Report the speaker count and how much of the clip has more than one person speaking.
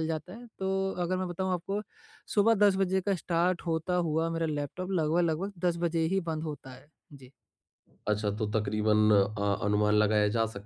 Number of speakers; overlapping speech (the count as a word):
two, no overlap